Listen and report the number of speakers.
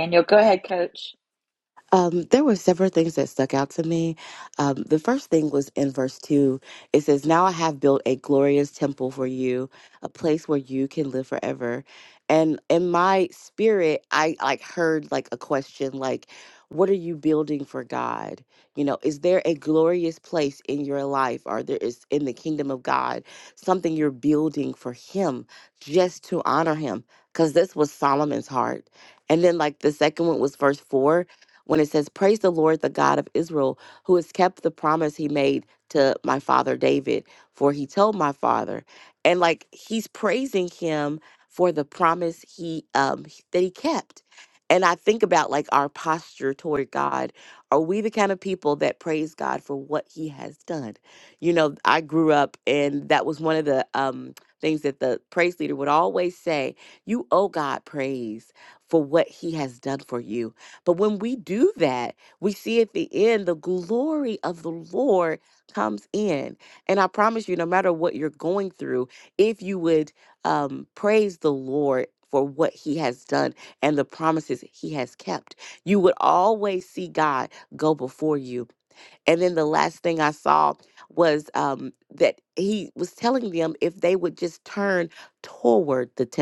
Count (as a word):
two